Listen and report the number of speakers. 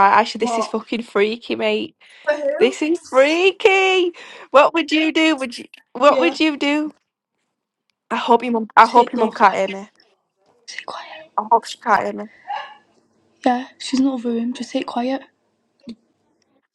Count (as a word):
two